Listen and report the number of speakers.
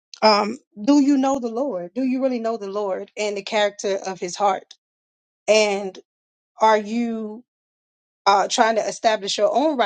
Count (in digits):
1